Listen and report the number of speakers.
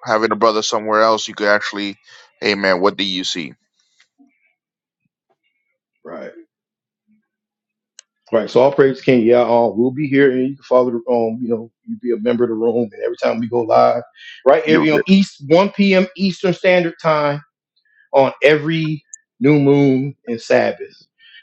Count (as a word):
two